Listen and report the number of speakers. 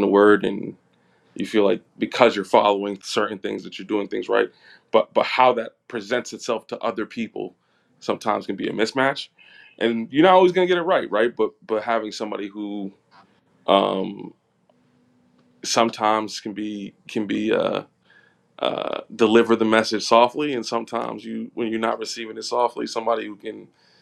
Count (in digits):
1